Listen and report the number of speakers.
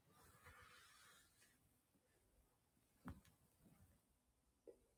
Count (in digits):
0